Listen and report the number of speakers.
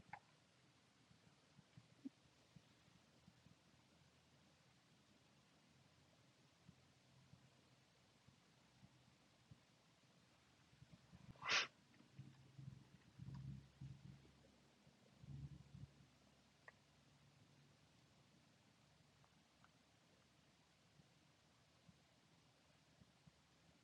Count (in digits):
0